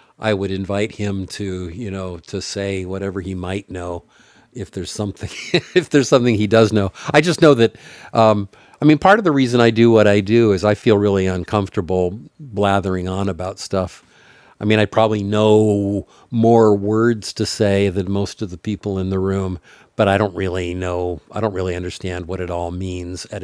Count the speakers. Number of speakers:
1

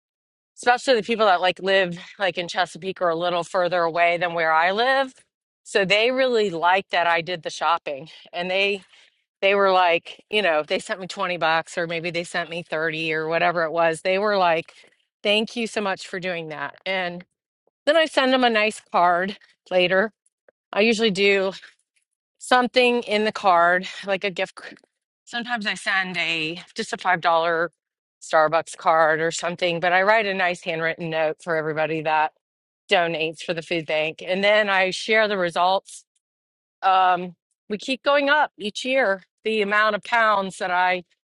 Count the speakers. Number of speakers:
1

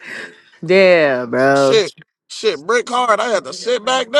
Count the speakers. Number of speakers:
2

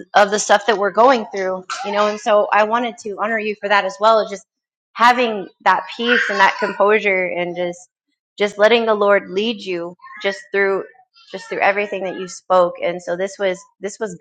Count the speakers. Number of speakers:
1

